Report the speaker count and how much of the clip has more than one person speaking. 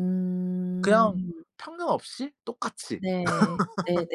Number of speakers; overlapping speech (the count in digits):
2, about 4%